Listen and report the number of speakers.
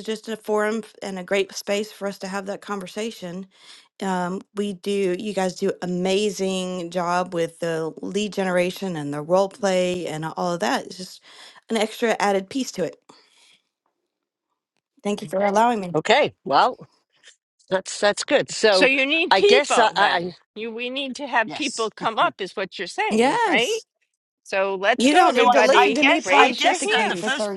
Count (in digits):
3